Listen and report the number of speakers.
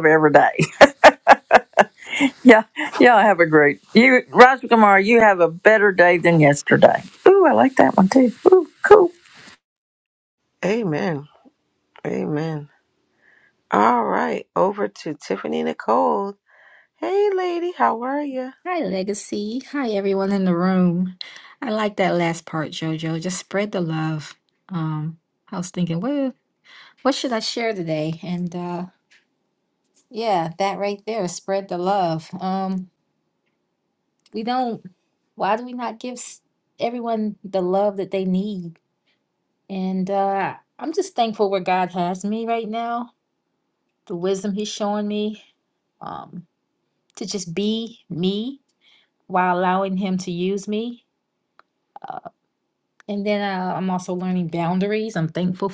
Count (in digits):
3